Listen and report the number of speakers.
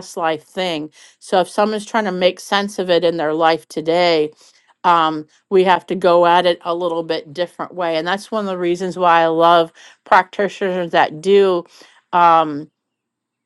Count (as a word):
one